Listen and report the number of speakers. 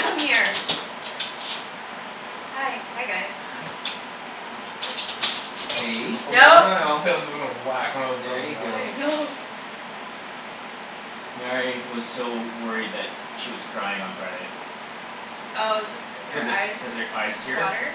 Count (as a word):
three